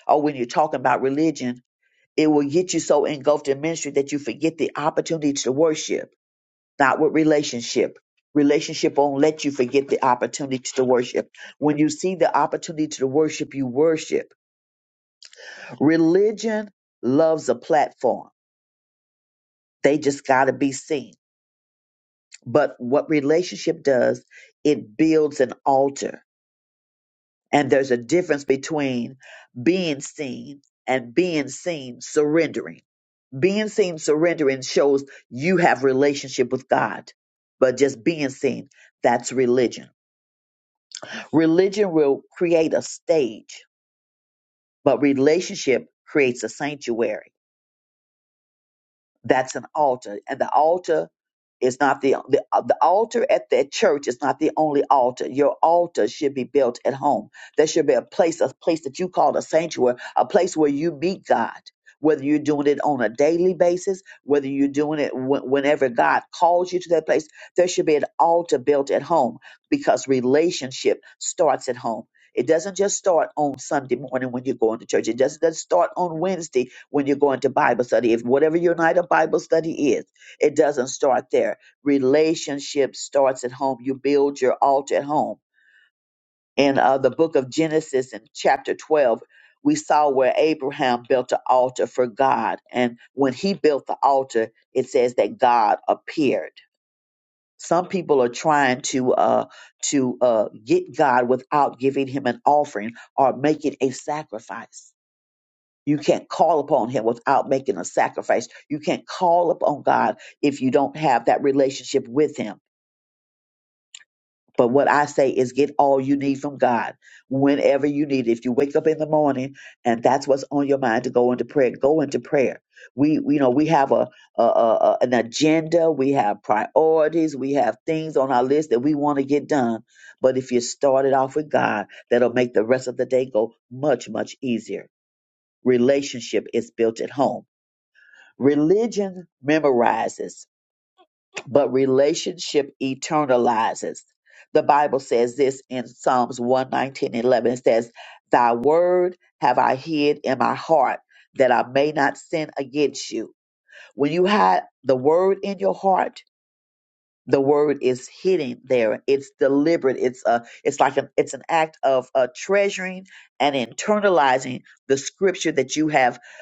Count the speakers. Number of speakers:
1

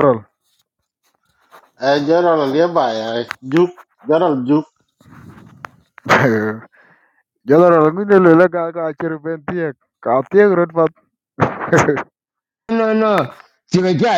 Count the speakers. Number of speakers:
3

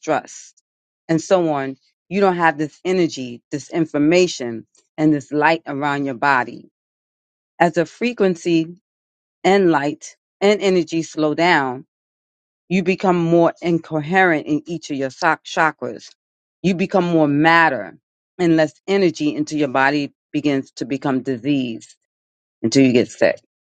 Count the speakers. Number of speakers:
1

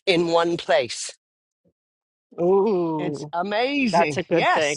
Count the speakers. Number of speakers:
2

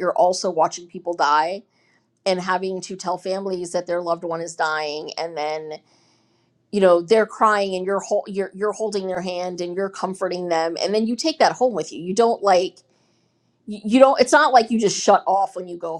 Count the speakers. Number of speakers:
1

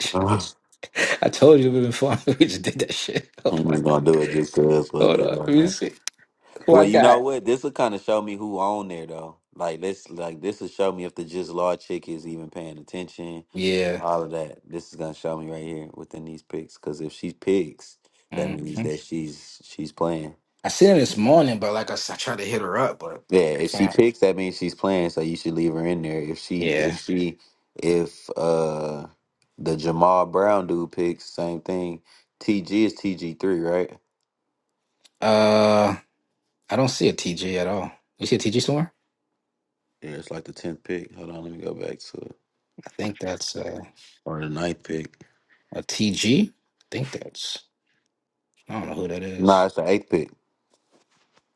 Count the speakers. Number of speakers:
2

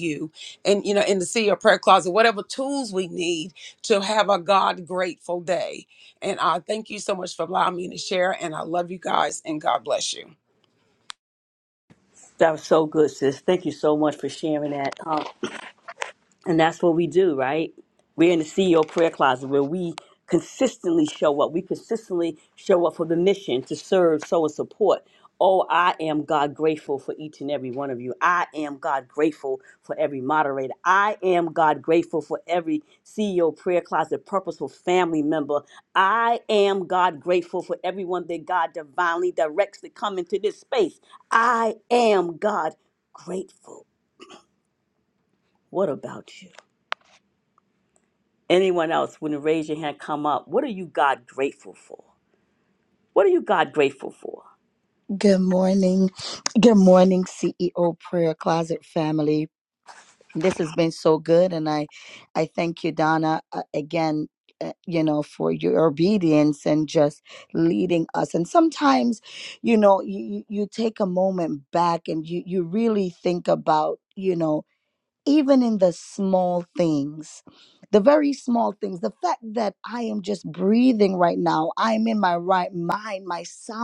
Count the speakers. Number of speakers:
3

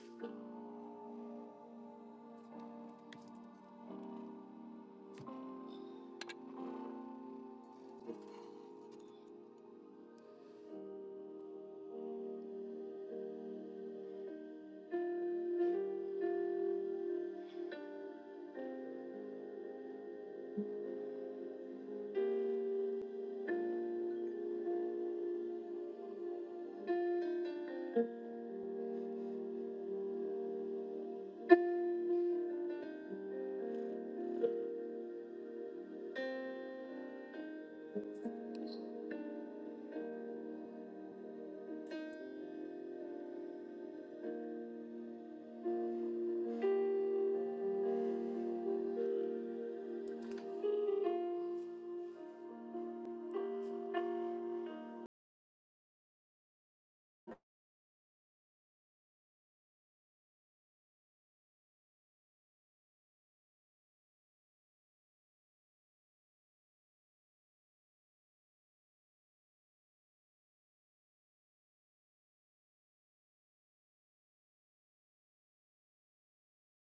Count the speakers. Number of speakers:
0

